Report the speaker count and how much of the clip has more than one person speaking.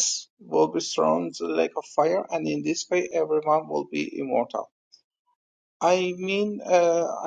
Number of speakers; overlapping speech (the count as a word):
one, no overlap